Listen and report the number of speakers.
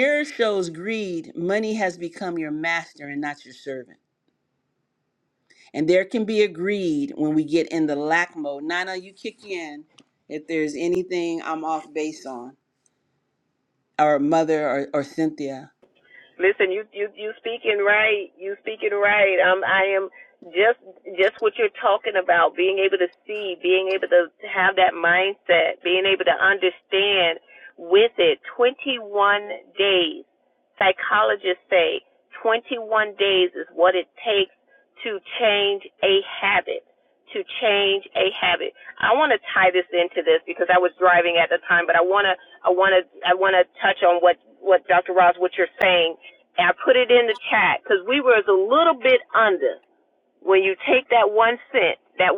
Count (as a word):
two